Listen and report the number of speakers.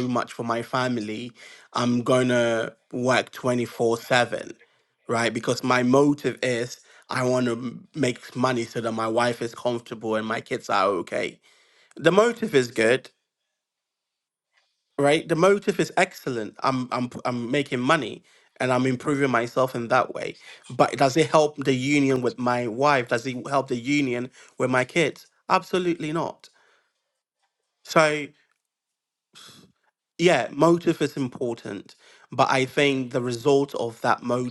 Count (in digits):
1